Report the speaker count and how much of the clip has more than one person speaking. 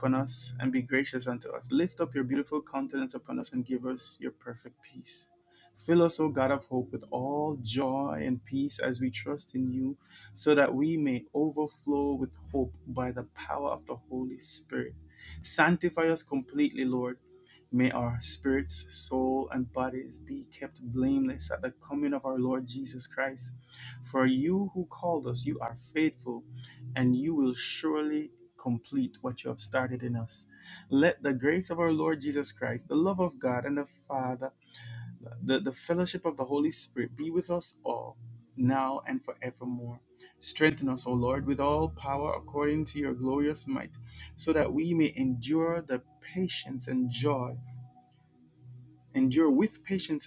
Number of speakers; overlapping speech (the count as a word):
one, no overlap